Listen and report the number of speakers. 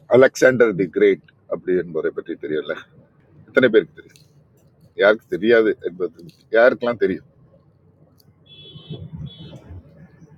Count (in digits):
1